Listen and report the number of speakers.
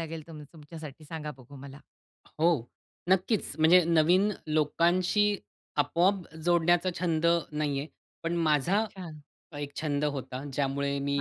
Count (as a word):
two